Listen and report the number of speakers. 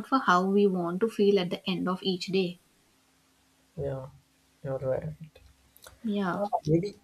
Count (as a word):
two